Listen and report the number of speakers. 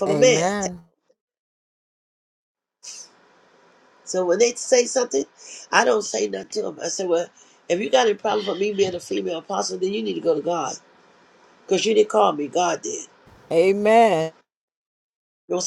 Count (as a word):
two